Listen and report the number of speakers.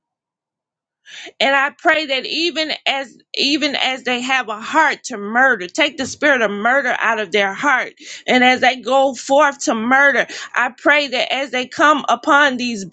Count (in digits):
1